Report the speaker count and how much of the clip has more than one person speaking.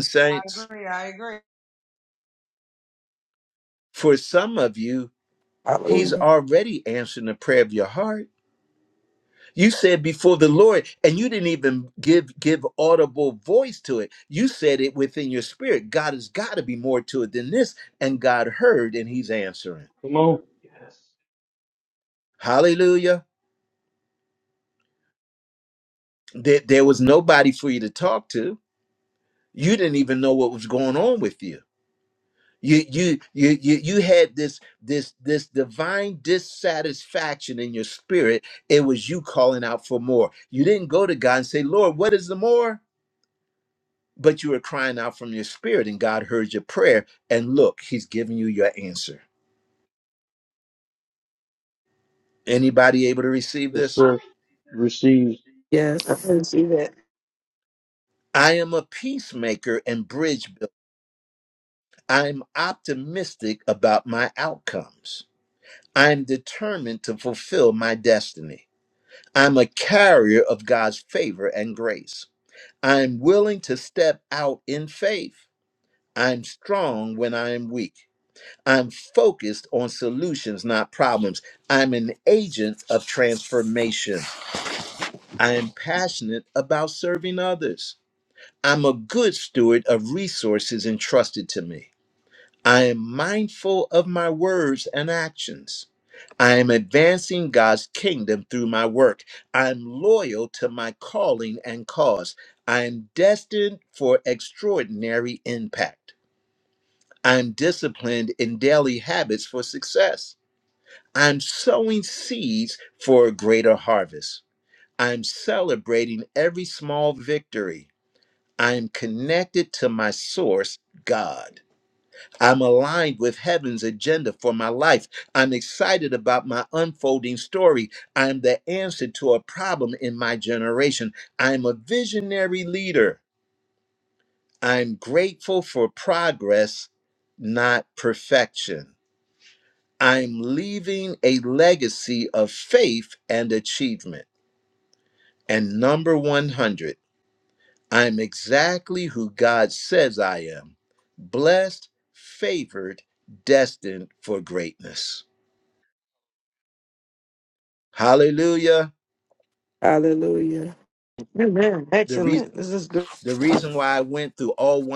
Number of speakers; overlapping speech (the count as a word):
five, about 1%